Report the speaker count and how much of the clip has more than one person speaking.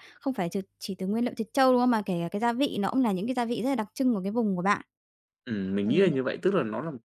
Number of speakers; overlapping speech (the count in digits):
2, about 4%